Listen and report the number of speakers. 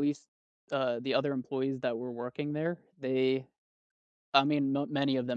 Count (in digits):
1